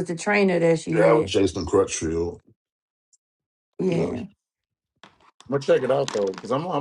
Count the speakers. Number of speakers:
3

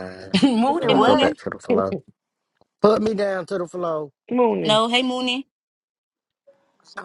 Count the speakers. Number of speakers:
3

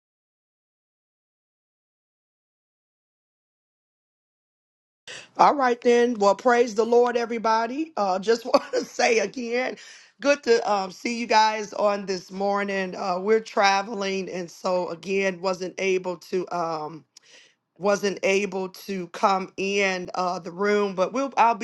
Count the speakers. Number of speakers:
1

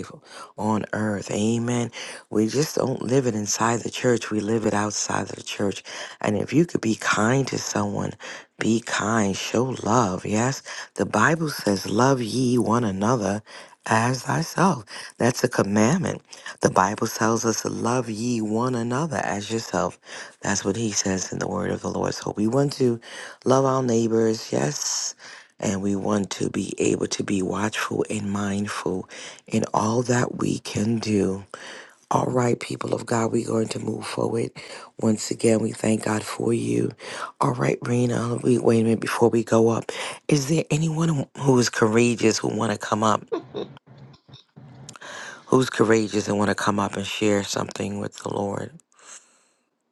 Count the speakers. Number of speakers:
1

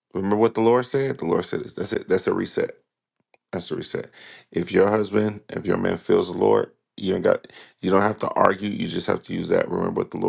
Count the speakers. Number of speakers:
1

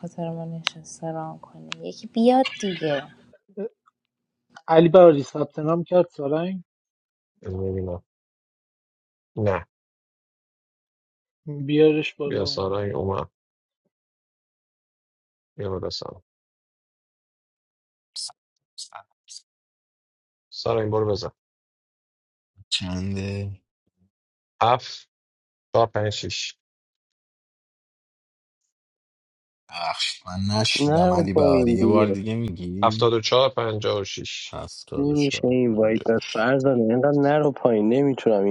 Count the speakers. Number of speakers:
5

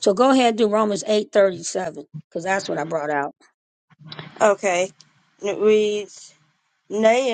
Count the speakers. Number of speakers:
2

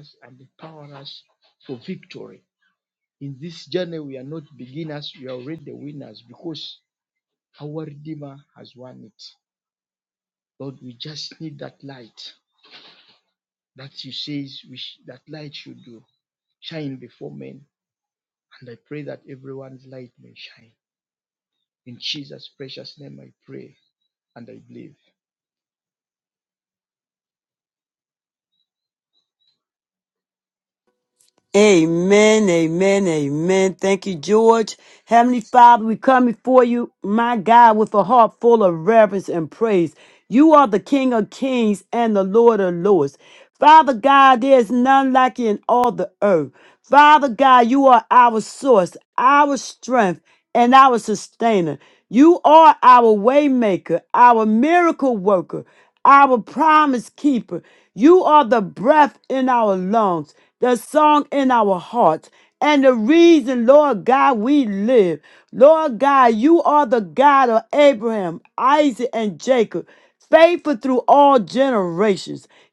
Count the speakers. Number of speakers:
2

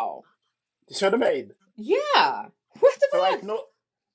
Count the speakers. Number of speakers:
2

